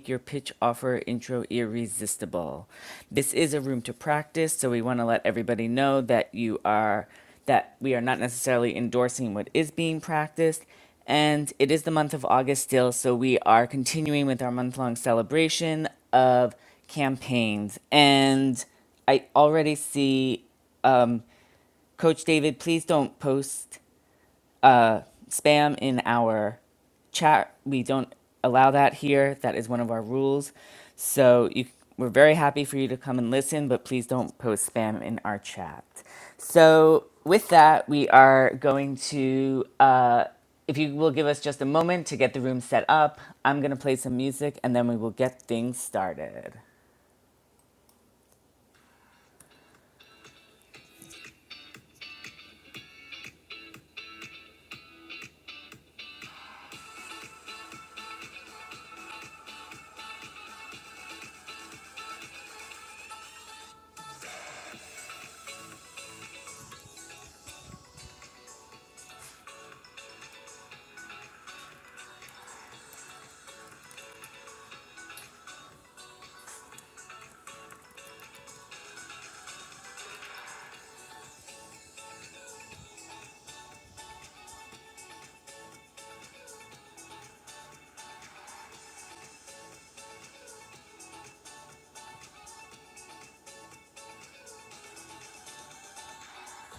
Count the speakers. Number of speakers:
one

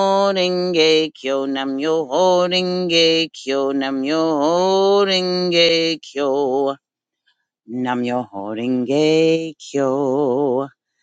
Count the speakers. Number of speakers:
one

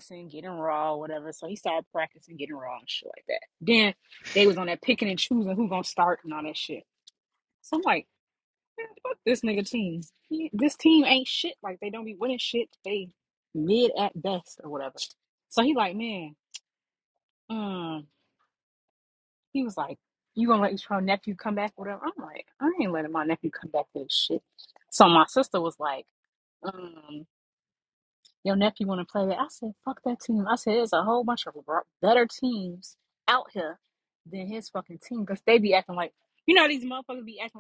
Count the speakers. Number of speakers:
one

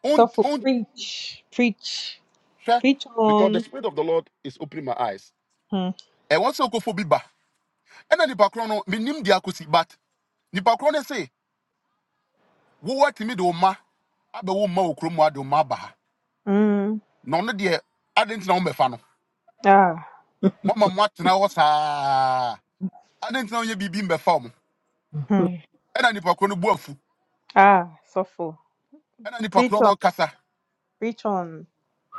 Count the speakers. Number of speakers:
two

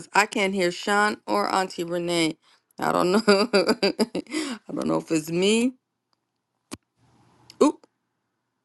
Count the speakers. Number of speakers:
one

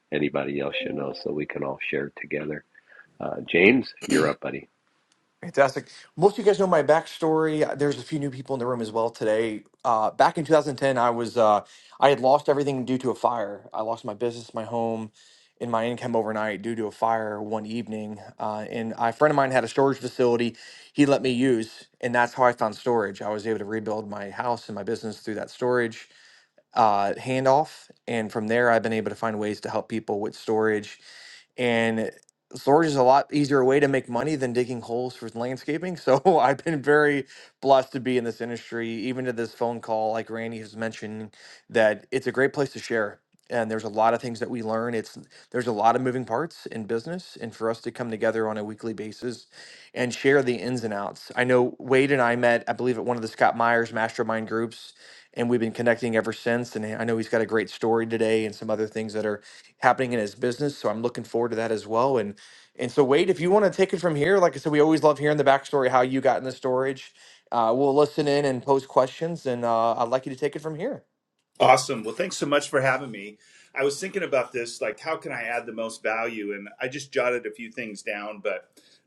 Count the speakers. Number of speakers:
three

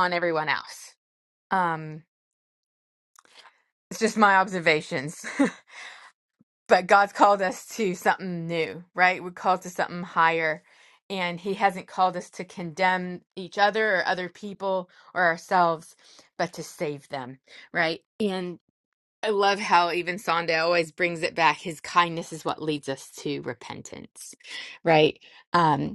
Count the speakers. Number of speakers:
one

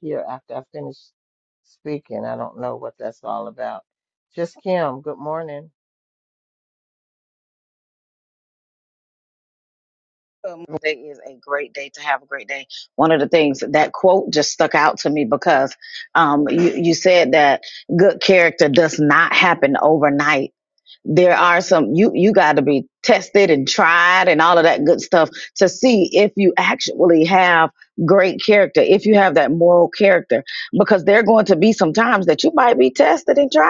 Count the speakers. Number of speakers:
two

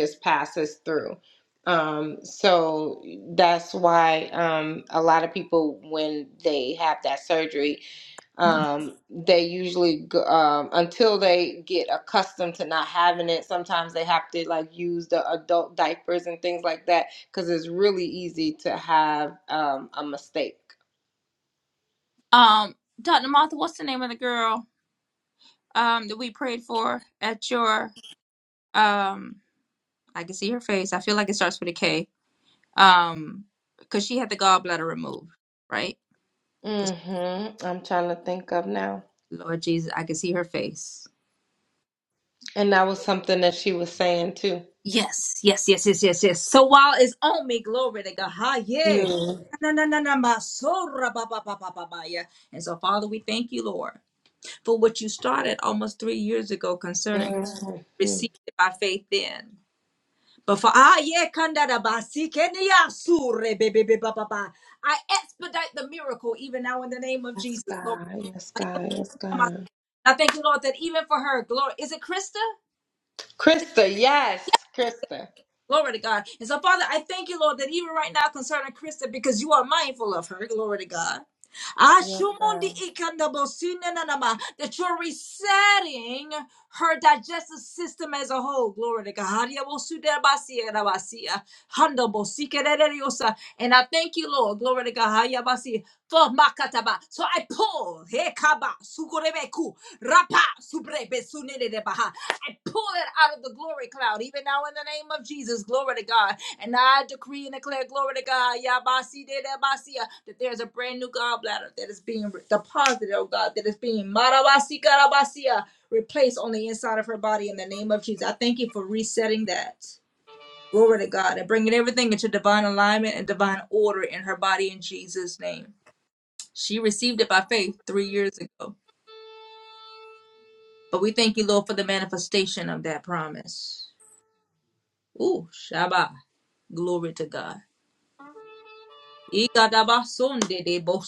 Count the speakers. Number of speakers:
two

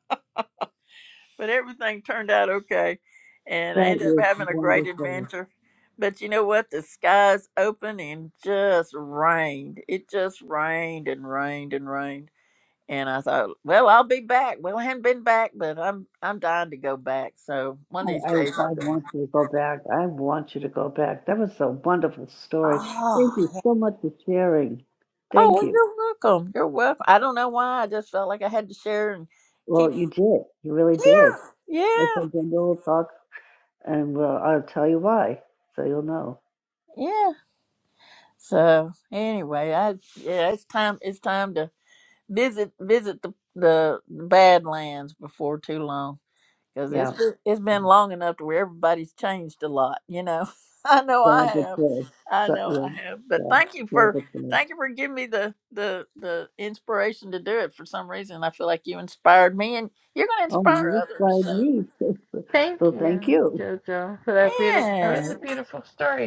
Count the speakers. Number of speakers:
three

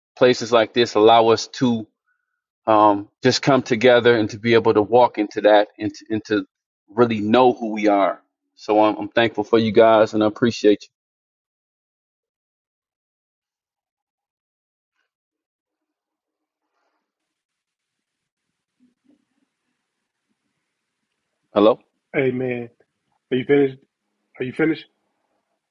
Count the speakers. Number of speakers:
two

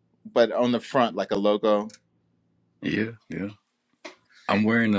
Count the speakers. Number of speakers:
two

